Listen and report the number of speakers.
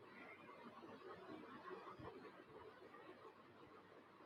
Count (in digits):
0